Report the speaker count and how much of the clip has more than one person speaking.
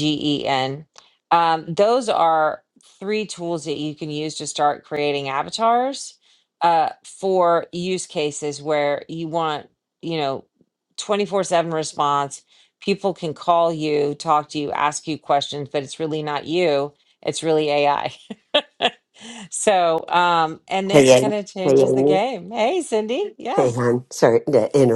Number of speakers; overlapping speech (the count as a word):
two, about 4%